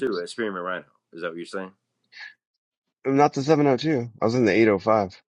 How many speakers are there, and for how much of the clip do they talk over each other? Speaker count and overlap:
two, under 1%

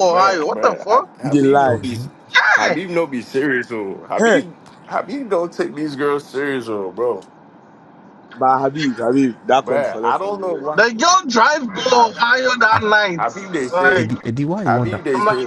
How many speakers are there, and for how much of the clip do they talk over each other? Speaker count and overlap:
four, about 35%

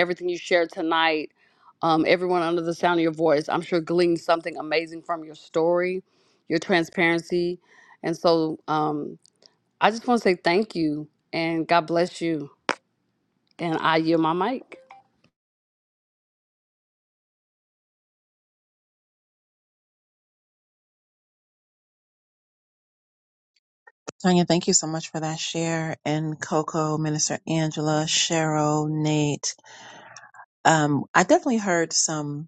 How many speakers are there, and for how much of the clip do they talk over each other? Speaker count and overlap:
two, no overlap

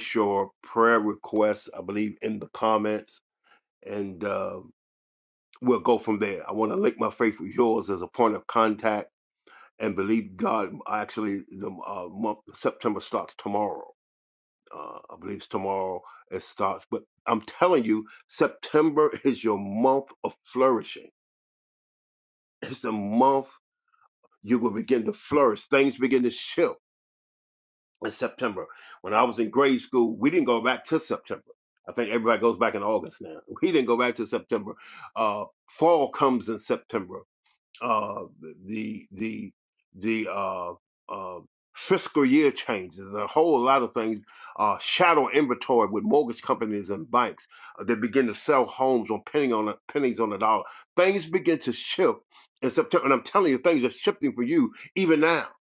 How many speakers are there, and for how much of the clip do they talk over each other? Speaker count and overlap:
one, no overlap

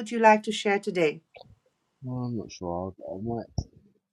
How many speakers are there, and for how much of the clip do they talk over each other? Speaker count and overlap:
two, no overlap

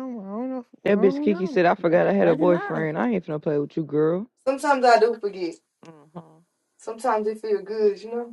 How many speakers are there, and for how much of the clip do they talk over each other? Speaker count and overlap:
three, about 24%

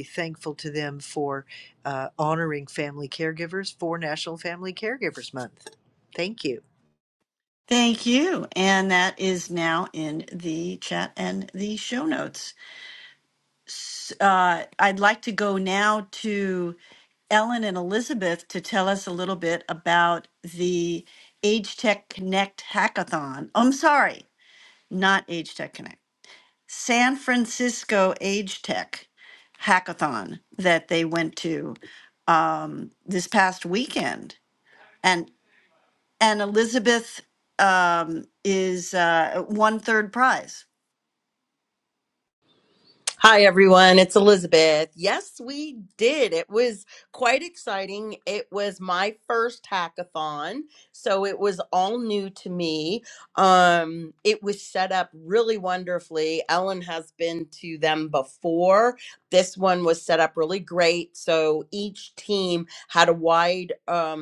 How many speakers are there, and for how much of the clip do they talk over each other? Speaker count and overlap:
three, no overlap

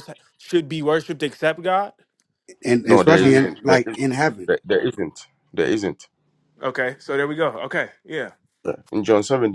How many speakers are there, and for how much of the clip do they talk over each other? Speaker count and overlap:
three, about 12%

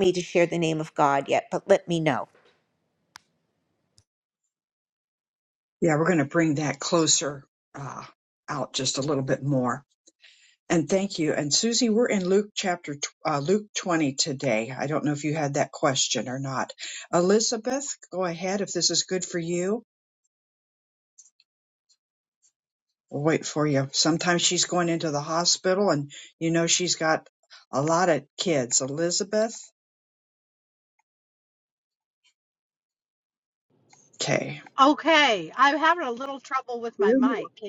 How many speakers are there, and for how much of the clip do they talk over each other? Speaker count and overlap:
three, no overlap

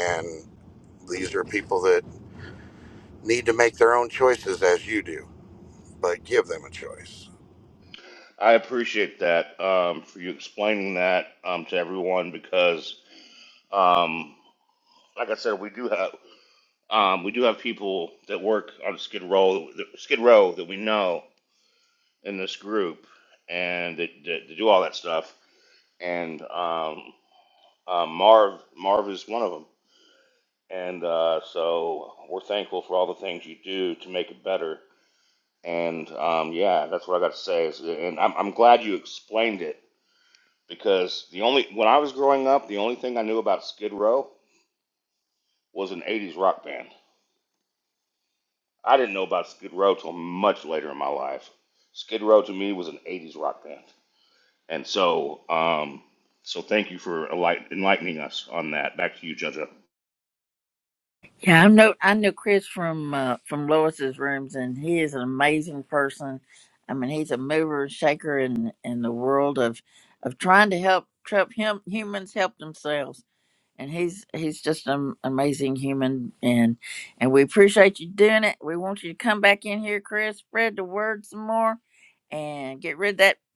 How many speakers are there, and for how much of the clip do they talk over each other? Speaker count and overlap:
three, no overlap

